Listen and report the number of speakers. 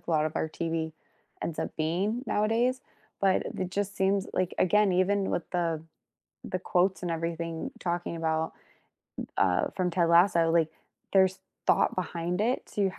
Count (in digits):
1